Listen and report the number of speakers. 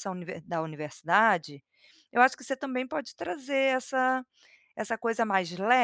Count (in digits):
1